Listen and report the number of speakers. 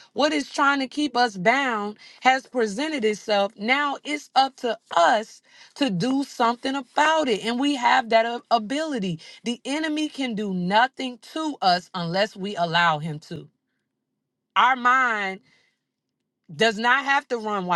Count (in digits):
1